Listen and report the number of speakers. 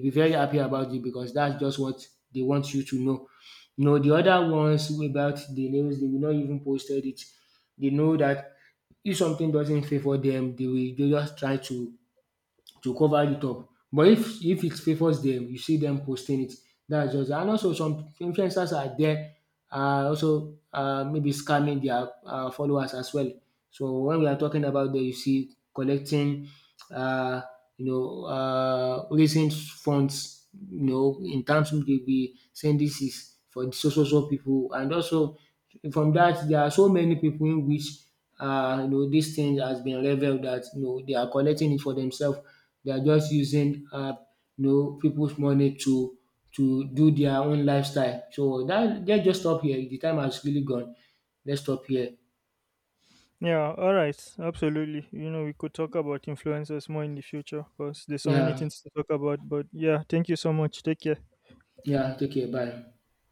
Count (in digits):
2